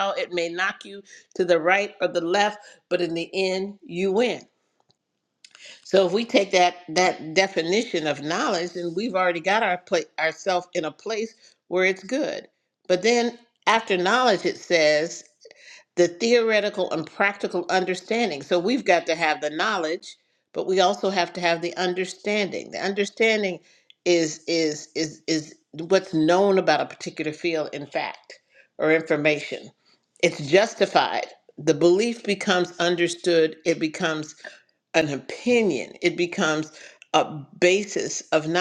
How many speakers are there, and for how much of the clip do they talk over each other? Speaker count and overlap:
one, no overlap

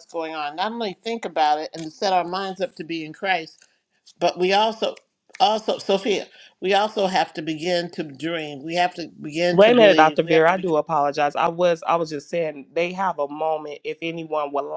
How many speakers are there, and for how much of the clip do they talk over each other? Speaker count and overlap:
two, about 8%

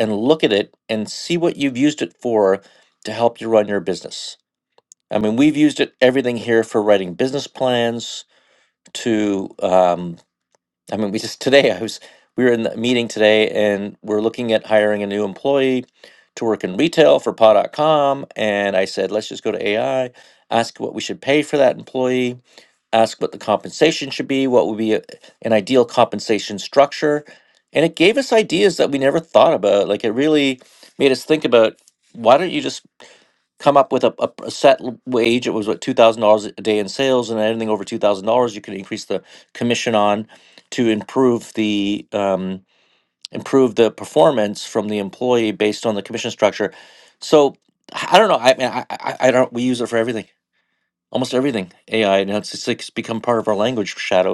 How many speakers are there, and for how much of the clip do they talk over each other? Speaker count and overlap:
one, no overlap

